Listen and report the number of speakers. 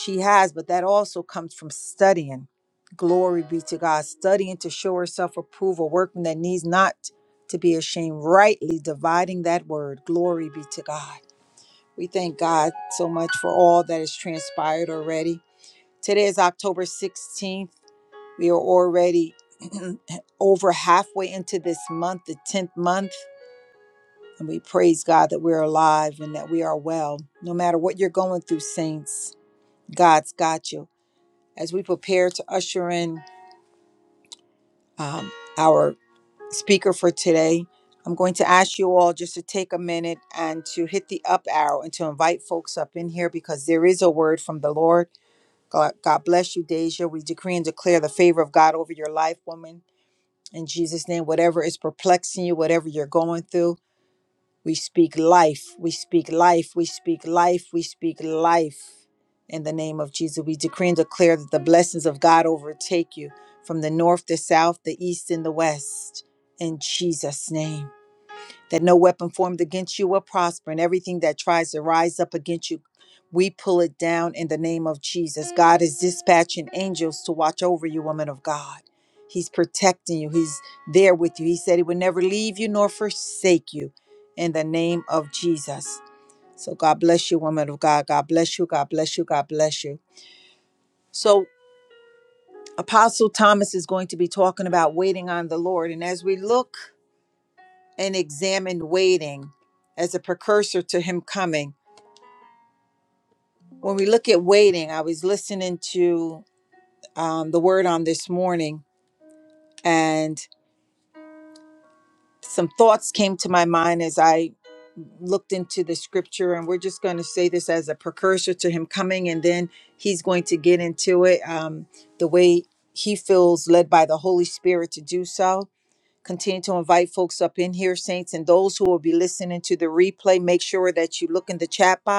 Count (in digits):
1